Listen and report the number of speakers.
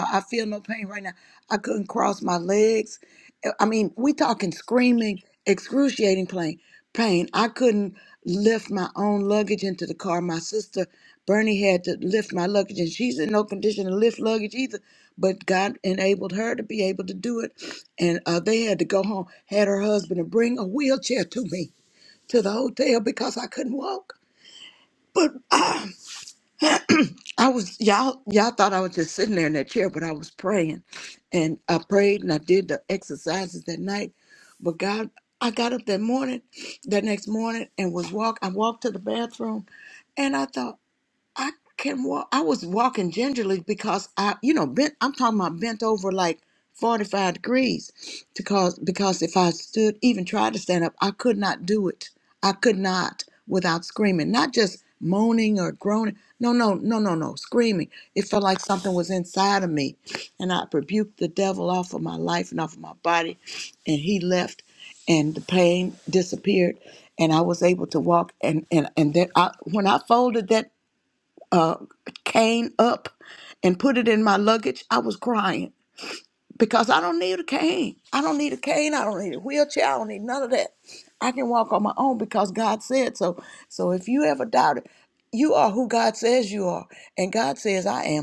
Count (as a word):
one